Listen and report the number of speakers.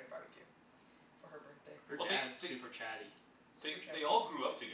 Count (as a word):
three